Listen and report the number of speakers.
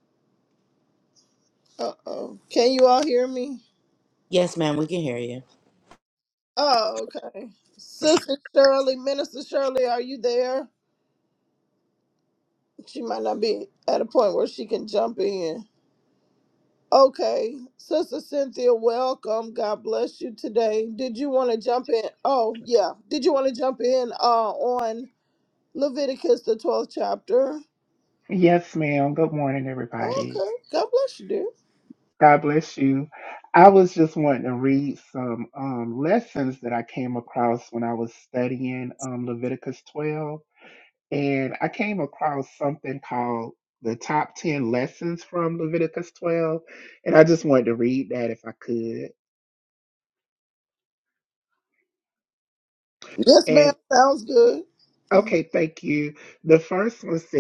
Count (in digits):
3